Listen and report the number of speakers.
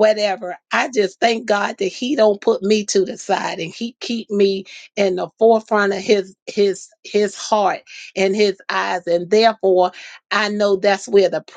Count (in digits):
1